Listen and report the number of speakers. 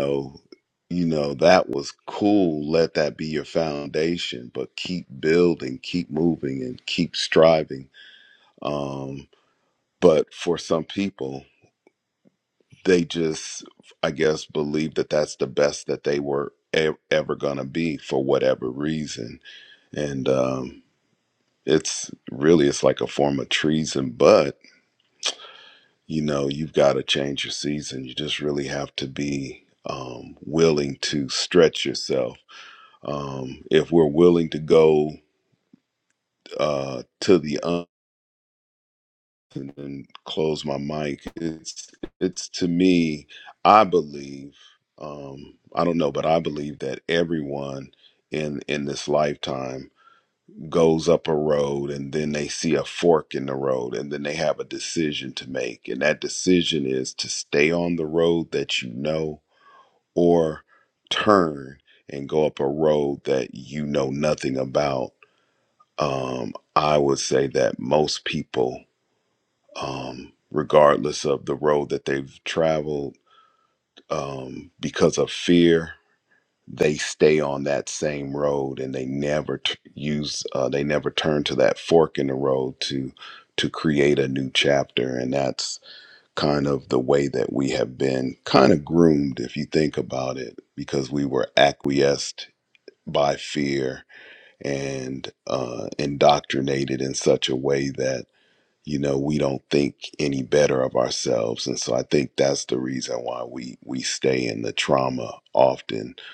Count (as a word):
one